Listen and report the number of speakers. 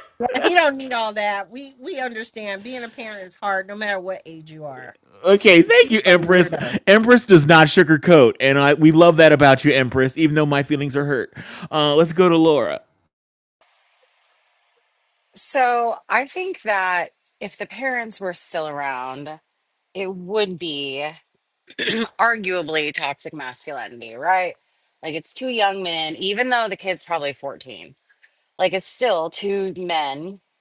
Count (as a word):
three